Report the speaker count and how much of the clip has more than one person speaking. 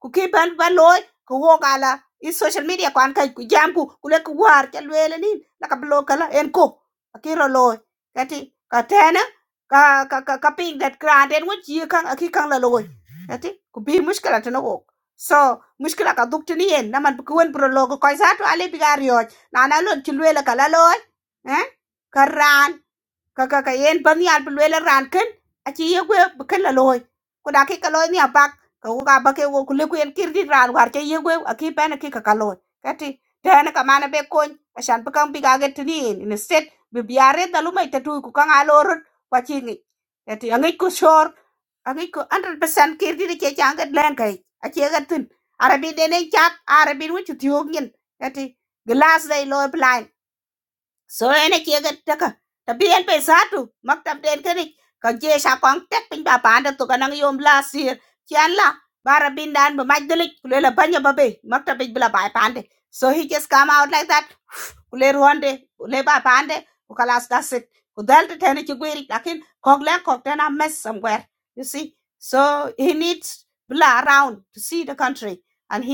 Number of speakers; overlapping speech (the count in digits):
1, no overlap